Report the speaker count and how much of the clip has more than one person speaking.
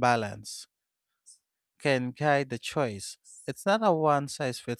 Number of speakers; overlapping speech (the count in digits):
1, no overlap